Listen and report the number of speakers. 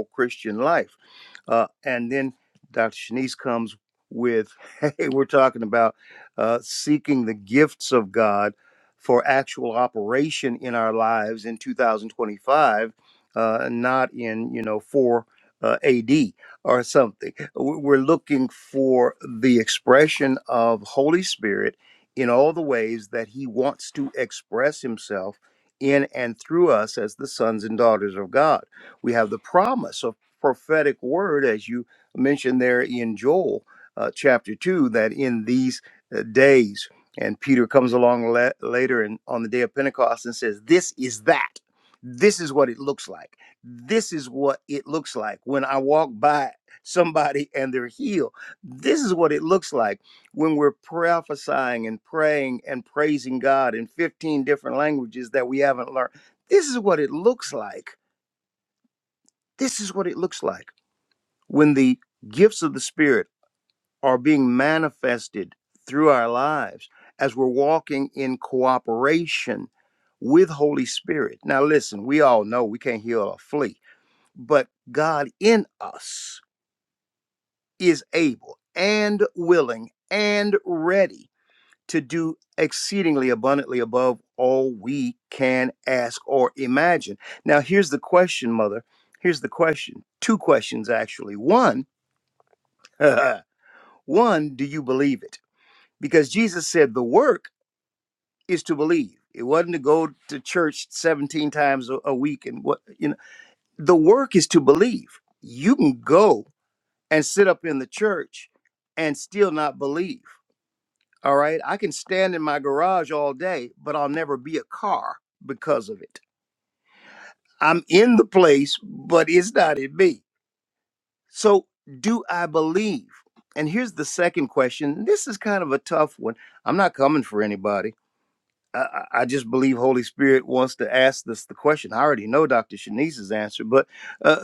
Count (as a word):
one